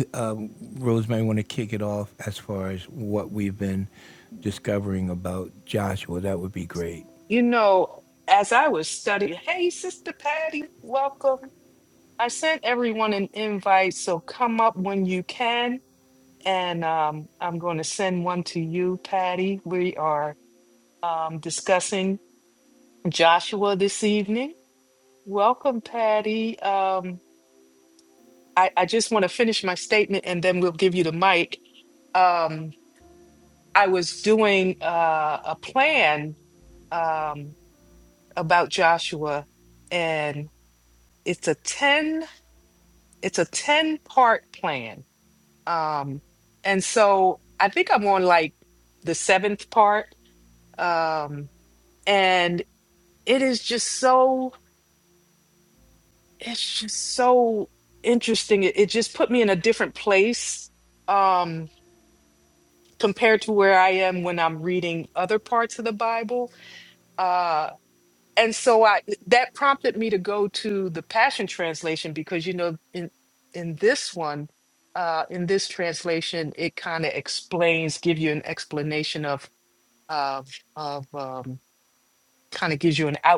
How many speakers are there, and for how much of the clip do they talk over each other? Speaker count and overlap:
two, no overlap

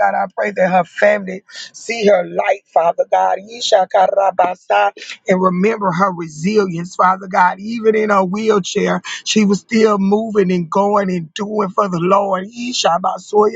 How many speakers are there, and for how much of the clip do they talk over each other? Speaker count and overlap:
one, no overlap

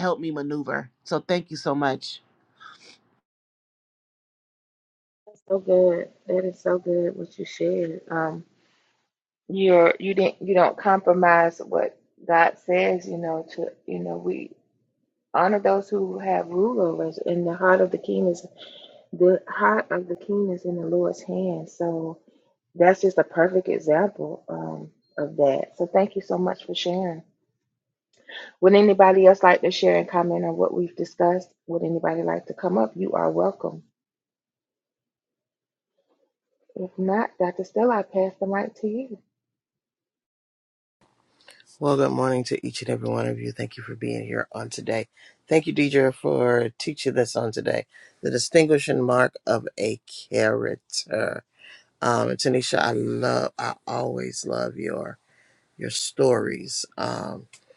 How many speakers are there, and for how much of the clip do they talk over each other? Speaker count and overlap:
three, no overlap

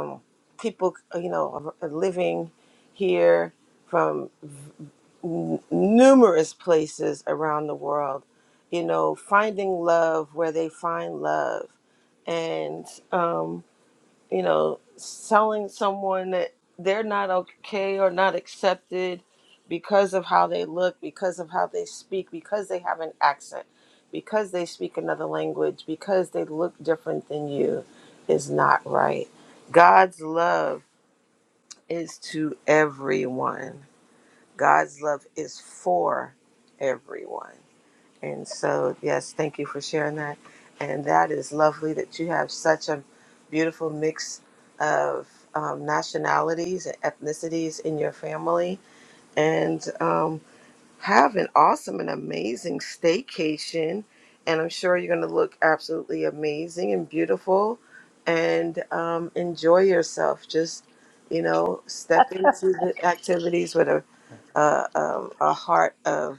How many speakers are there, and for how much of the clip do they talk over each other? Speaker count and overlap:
one, no overlap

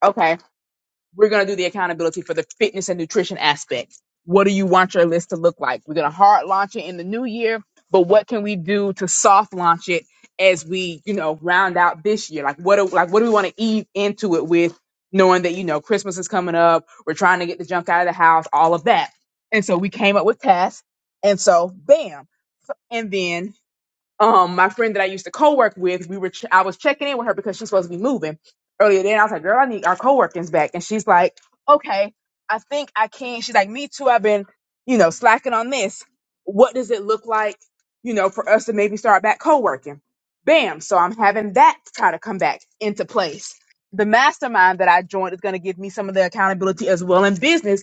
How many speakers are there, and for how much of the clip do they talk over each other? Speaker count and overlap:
one, no overlap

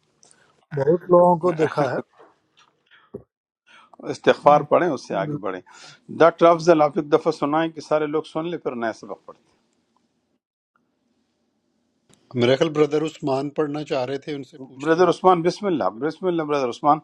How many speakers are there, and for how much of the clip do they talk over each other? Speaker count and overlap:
three, about 5%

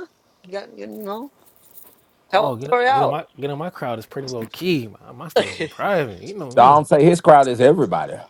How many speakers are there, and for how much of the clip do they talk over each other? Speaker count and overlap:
three, about 12%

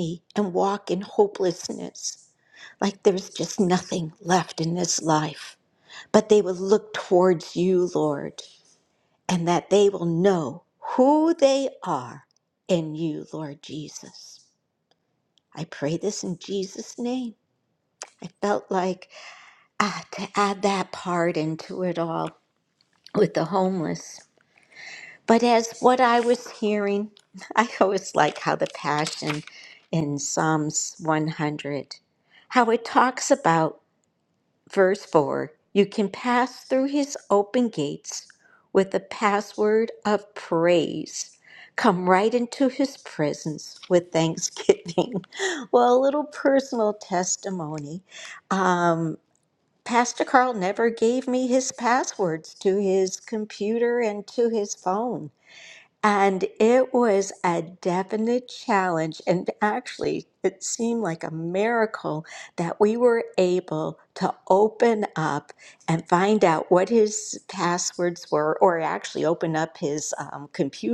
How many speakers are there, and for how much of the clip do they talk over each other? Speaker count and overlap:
one, no overlap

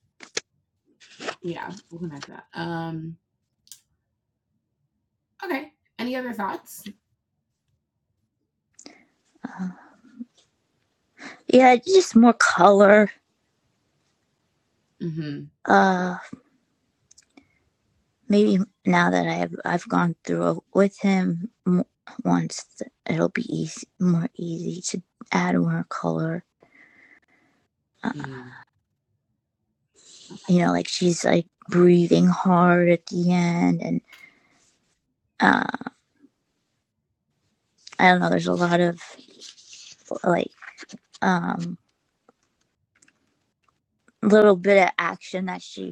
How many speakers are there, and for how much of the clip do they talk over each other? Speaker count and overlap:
two, no overlap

